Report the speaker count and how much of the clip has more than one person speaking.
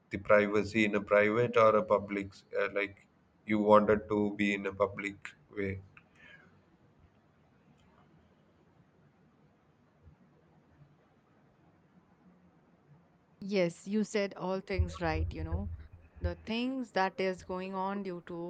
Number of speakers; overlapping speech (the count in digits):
2, no overlap